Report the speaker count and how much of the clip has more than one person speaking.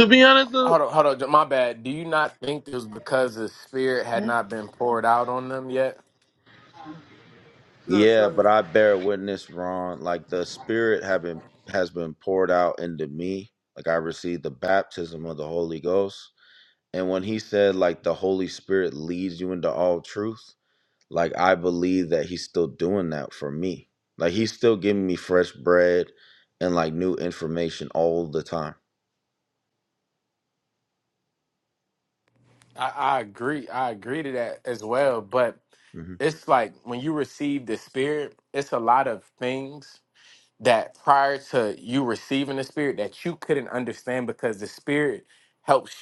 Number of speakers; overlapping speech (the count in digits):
3, about 2%